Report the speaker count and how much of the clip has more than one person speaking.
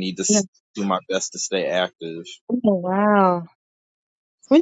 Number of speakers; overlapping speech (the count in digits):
2, no overlap